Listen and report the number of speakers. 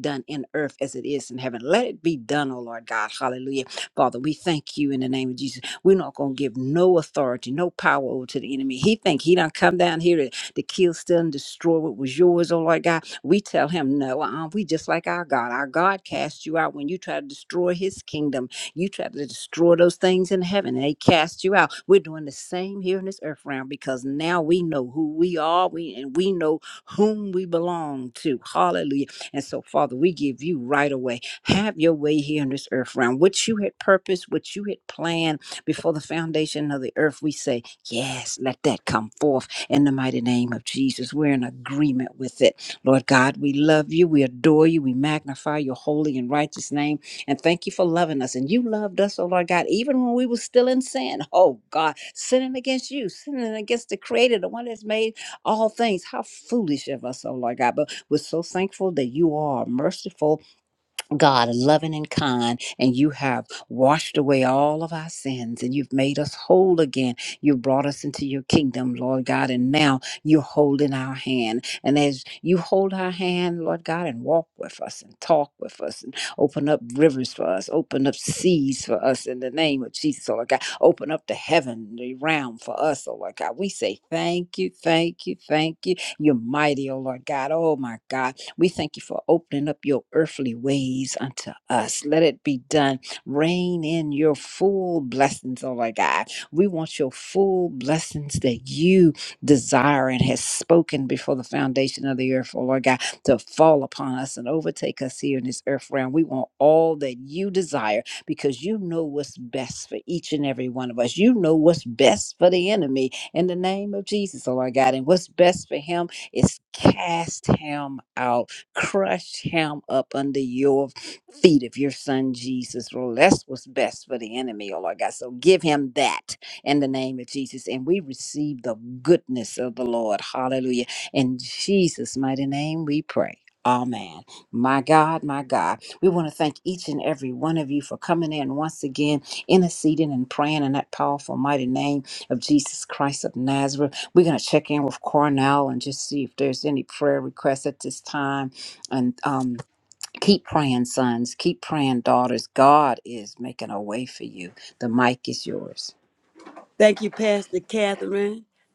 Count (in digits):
2